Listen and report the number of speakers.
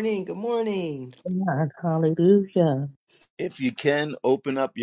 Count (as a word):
three